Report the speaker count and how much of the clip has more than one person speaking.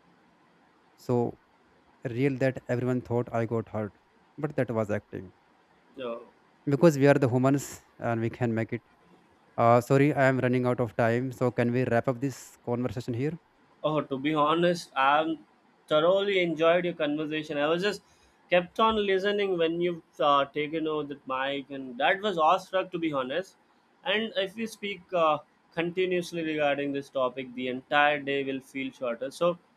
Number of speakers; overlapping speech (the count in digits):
2, no overlap